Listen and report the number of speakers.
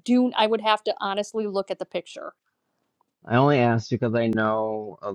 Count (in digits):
2